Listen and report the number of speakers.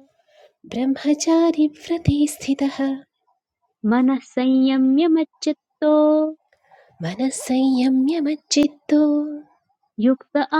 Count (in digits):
2